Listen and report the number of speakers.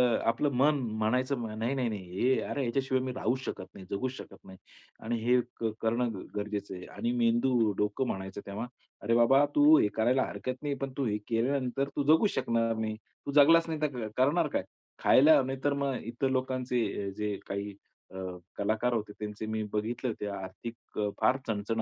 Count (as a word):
one